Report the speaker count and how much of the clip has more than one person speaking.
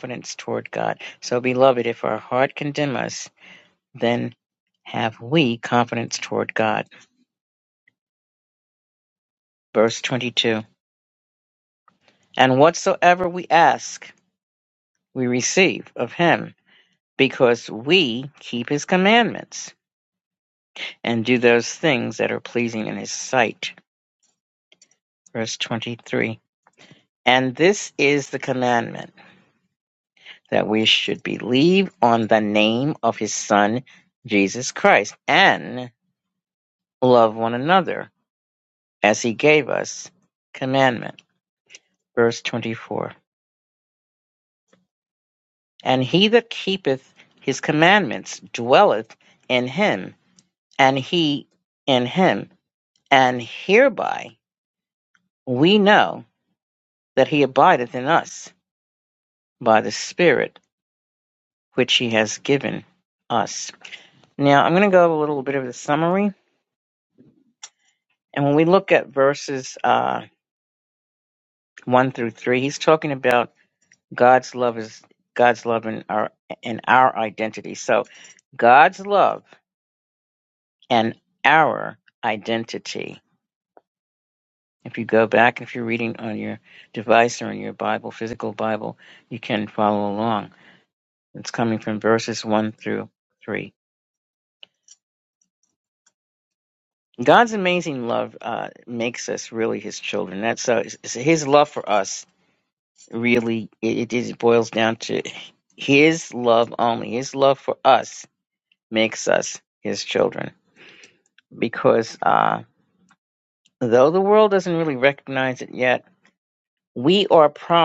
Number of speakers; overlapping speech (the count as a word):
one, no overlap